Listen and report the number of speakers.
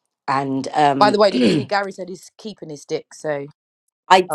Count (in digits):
2